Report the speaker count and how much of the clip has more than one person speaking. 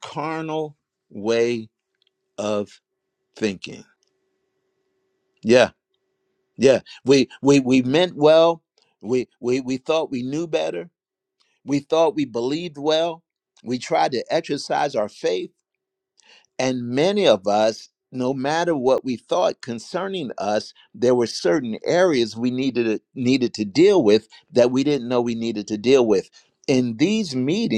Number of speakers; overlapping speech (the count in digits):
1, no overlap